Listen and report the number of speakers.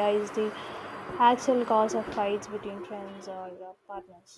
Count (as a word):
one